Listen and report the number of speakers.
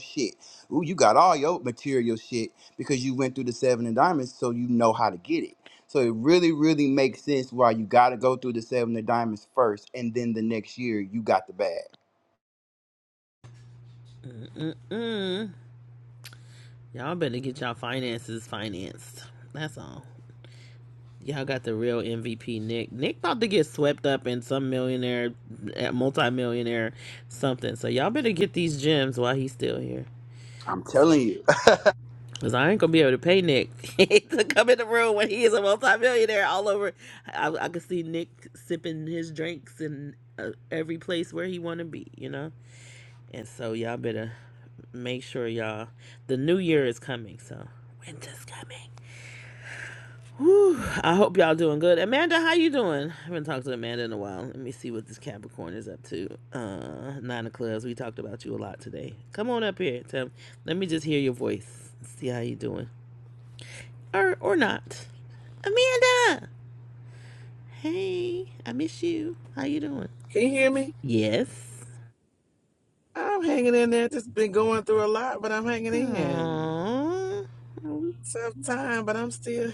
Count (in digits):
3